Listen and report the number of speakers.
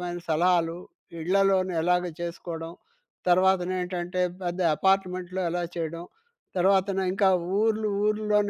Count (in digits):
1